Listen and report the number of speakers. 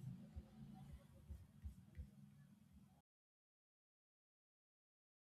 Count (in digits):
0